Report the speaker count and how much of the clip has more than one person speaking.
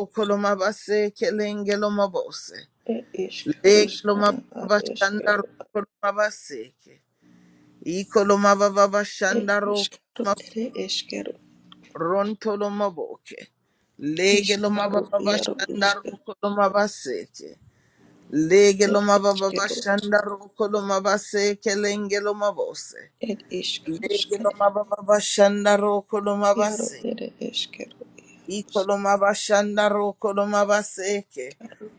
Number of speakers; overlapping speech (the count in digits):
2, about 22%